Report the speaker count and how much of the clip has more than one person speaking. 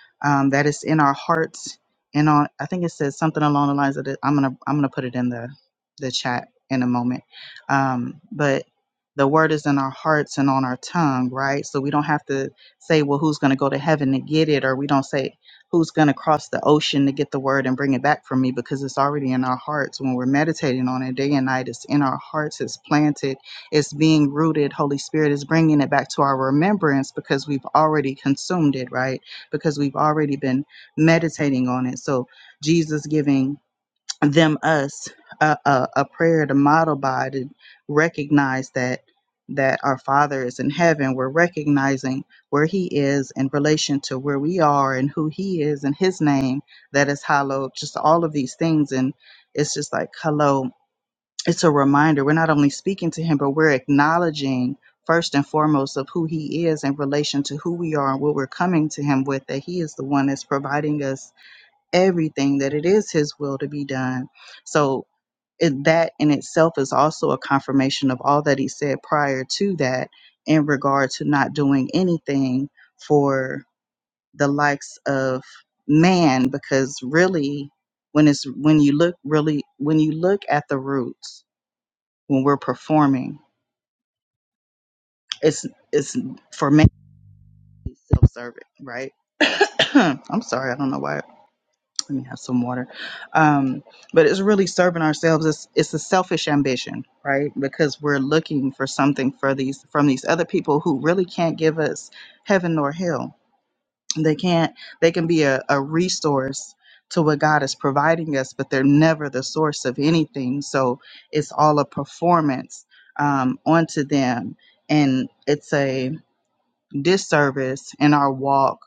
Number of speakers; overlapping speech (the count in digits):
1, no overlap